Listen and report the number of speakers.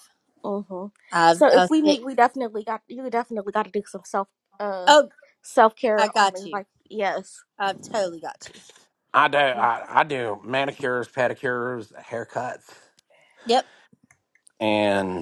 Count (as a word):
three